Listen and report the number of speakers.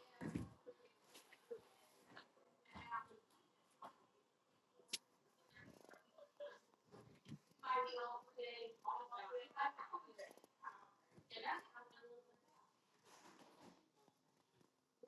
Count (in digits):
0